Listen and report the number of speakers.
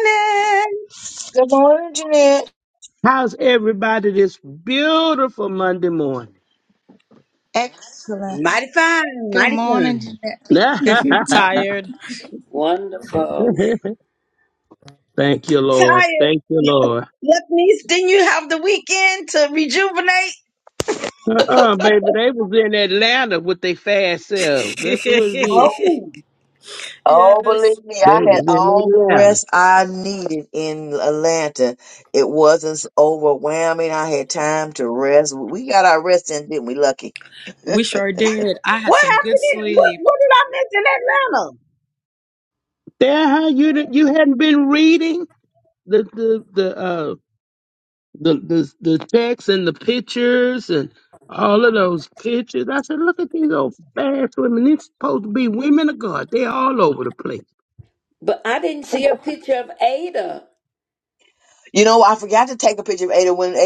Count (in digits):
6